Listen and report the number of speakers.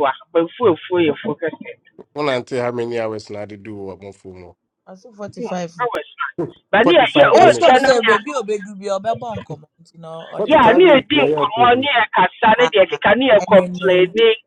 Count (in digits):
3